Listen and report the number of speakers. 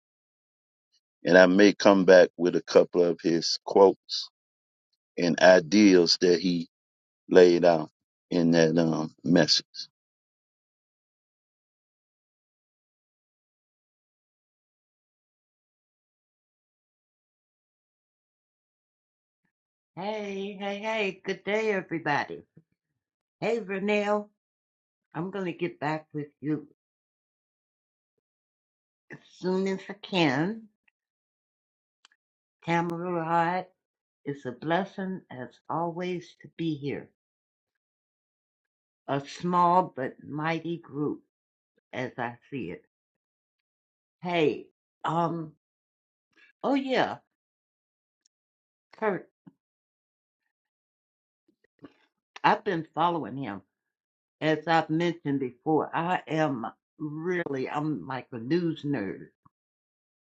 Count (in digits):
2